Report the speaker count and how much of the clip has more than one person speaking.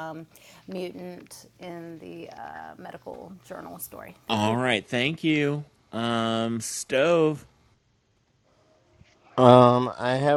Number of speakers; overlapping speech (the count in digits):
3, about 3%